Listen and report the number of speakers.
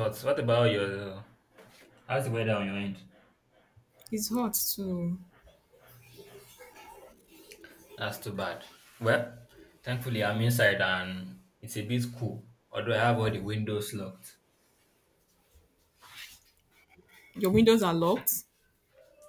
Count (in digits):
2